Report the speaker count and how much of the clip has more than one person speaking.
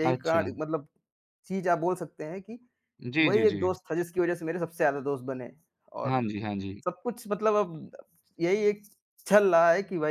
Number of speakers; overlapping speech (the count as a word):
two, about 12%